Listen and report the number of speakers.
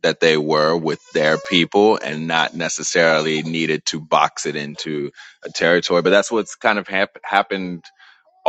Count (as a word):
one